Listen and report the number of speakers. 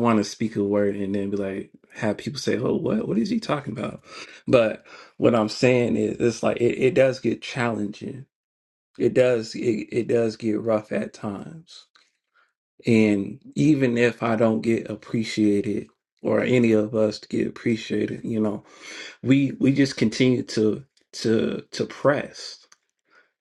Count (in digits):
1